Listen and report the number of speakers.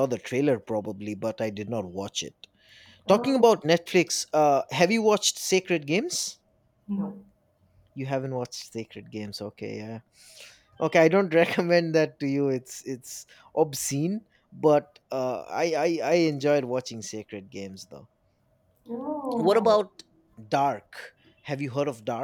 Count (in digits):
2